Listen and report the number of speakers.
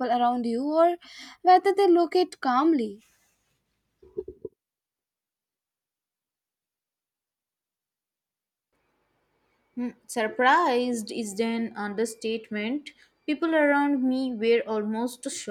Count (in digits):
2